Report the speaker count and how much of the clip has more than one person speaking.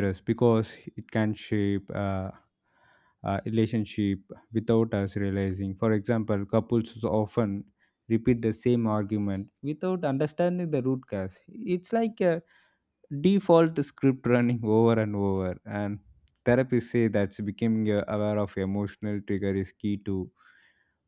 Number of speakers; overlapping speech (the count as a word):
one, no overlap